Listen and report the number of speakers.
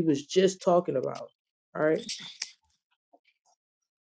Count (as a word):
one